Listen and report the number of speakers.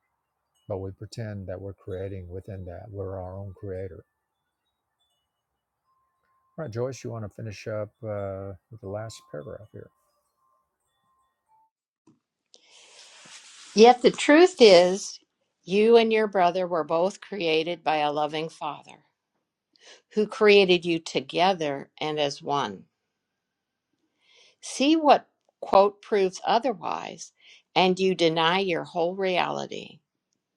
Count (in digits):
2